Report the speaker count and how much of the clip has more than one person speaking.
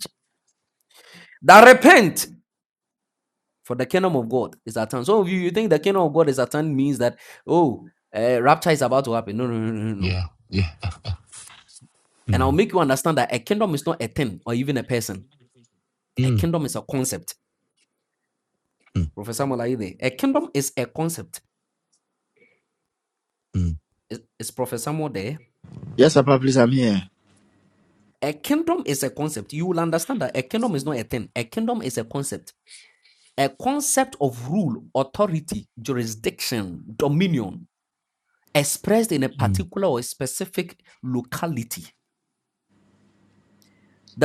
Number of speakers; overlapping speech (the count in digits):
3, about 2%